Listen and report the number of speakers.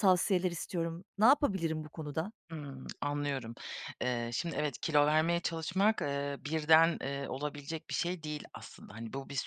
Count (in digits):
2